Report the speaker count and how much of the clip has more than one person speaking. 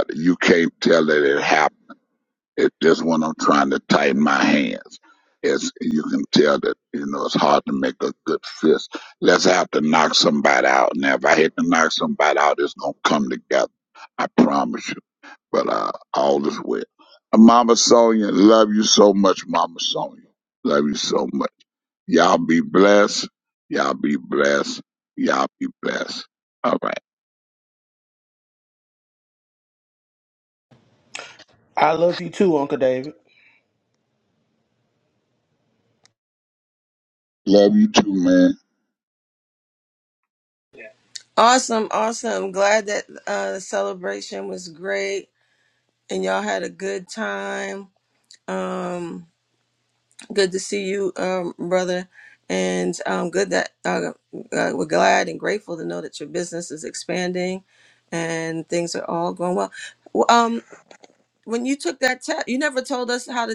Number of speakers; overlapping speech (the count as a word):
three, no overlap